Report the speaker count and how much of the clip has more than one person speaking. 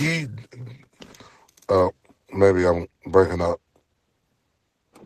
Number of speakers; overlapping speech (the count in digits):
1, no overlap